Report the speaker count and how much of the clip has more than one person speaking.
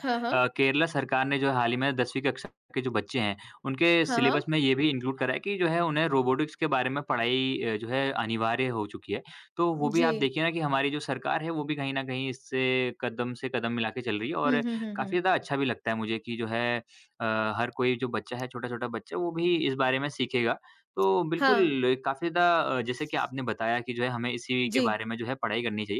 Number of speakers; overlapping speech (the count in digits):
2, about 8%